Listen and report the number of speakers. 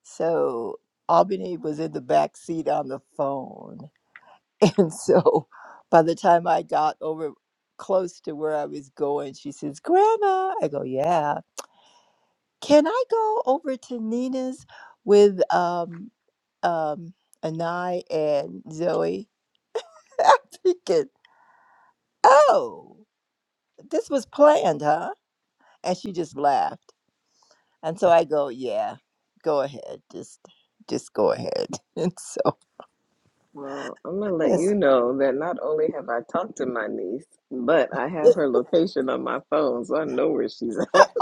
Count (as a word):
two